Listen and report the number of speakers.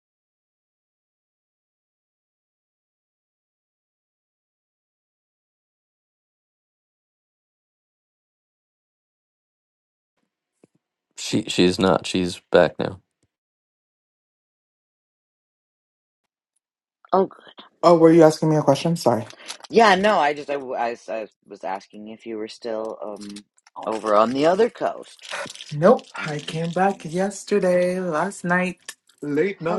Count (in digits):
3